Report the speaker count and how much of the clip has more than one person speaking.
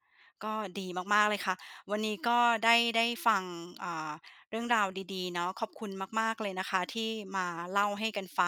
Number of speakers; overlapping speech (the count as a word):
one, no overlap